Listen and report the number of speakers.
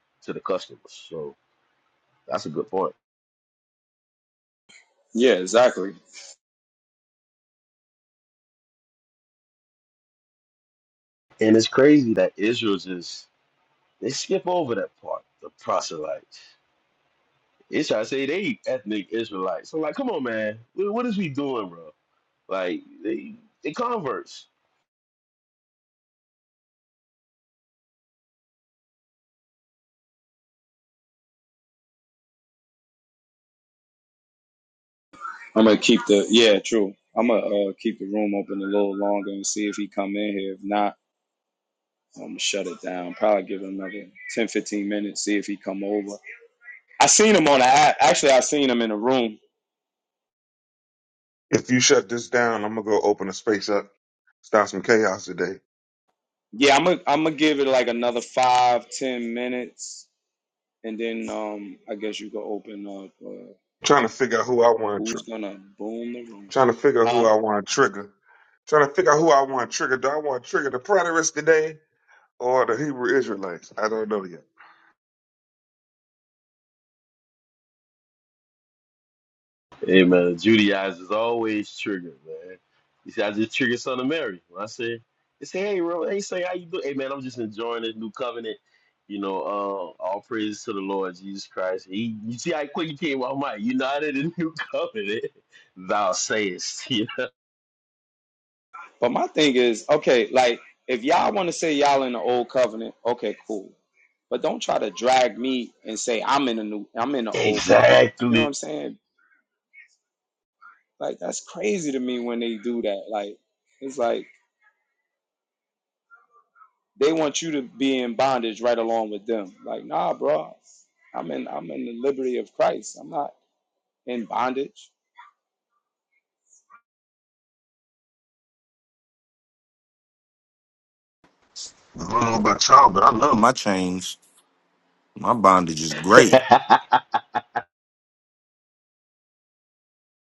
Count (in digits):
4